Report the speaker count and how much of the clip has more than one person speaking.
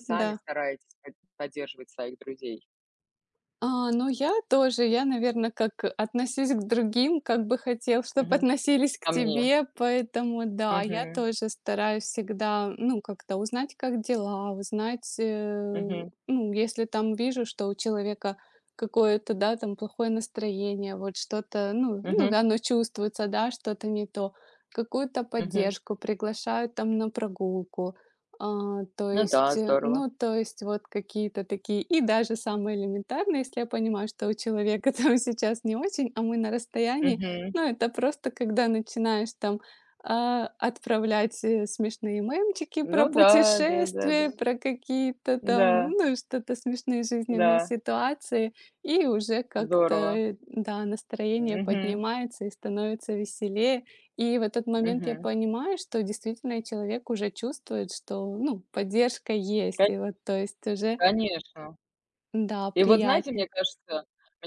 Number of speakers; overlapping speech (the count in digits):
2, about 13%